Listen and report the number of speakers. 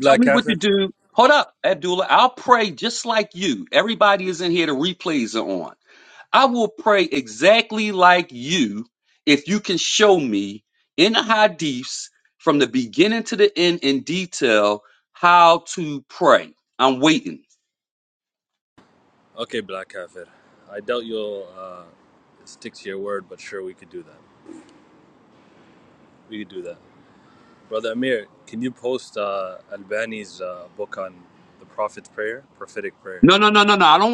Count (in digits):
2